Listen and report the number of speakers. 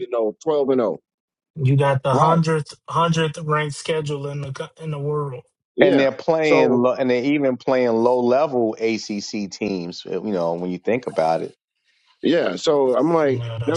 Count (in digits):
3